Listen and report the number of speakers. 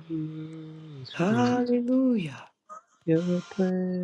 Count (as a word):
two